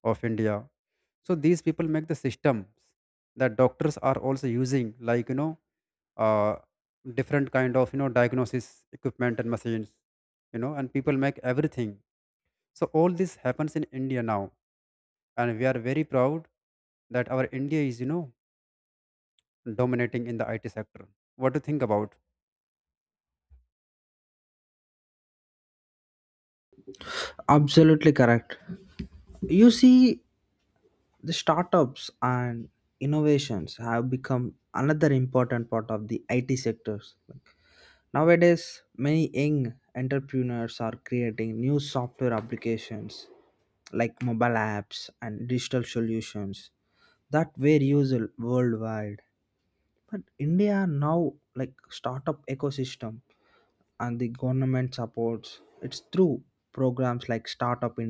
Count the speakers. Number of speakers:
2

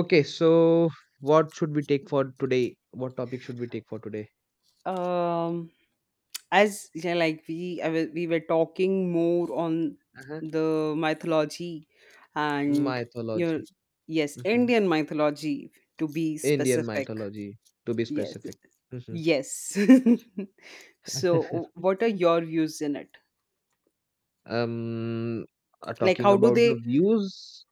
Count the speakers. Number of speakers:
2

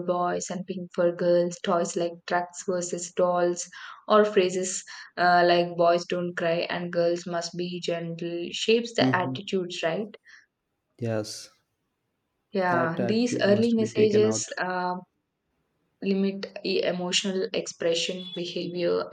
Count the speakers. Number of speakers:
2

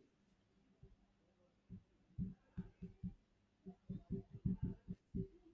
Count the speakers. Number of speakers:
0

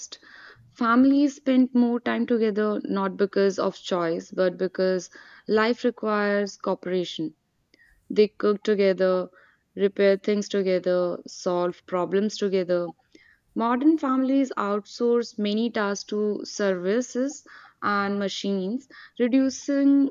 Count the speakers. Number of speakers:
1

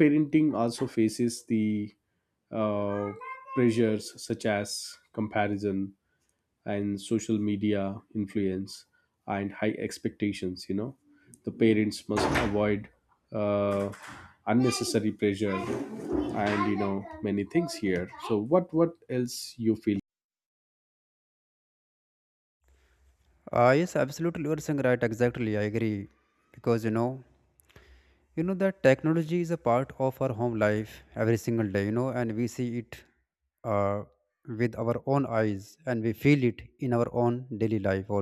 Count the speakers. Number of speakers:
2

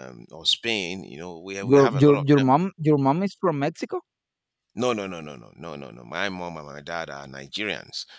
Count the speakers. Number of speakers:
2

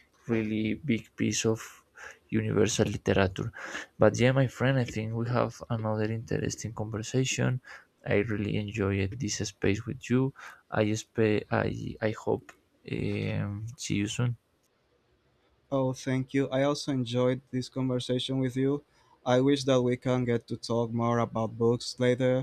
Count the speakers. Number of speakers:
2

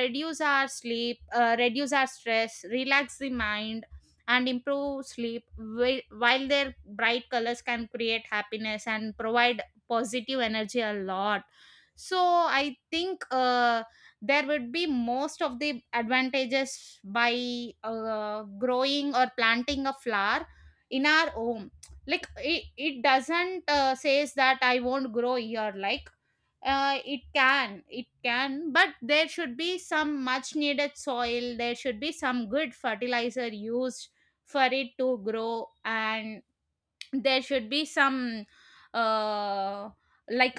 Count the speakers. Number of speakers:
1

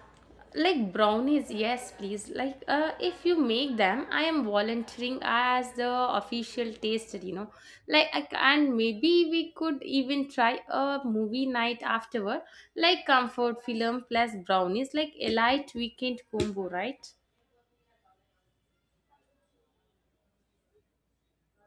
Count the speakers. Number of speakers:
1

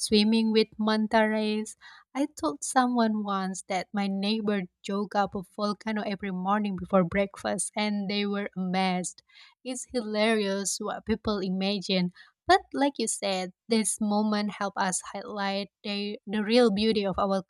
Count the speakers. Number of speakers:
1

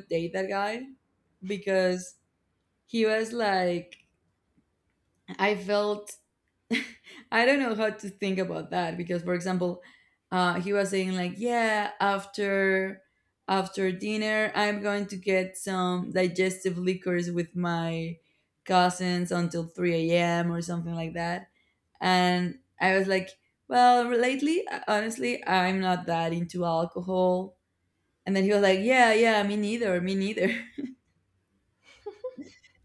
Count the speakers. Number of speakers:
1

